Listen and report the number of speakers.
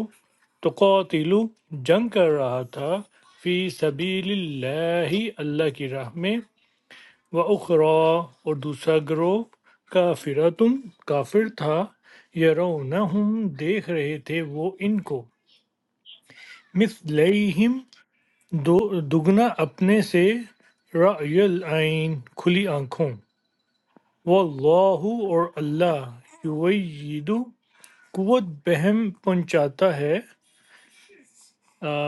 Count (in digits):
1